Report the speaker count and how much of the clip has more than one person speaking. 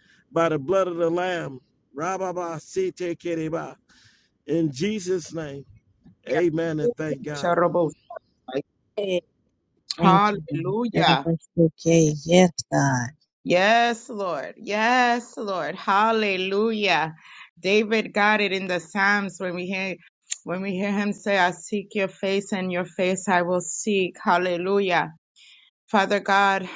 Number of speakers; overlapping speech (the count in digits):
3, about 2%